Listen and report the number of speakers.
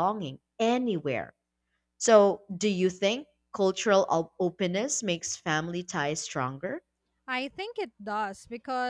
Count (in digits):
2